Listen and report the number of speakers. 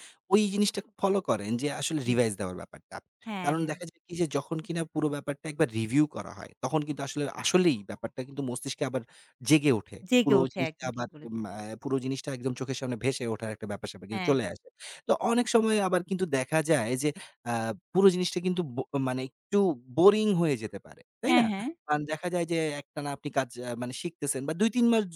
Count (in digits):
2